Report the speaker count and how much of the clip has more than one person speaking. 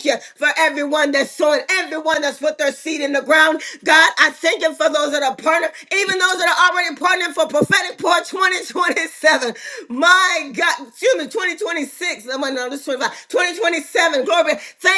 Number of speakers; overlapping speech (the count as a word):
one, no overlap